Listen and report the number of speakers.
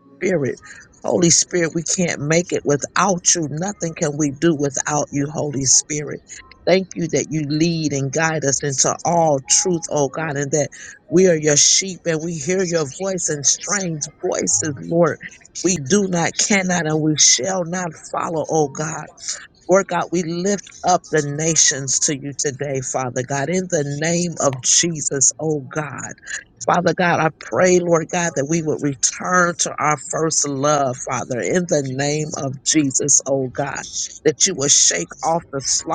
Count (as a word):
one